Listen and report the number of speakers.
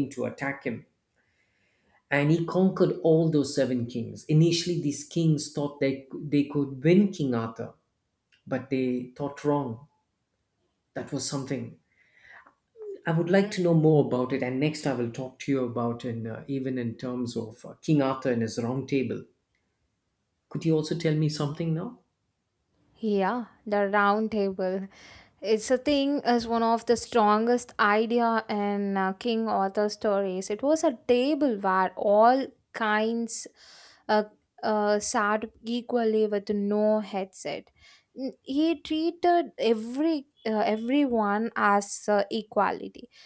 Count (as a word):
two